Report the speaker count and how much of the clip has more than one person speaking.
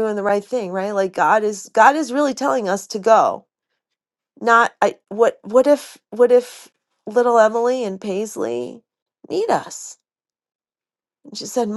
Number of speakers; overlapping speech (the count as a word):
one, no overlap